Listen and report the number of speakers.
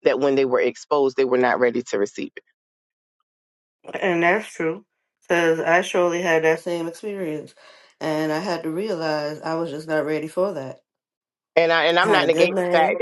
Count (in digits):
2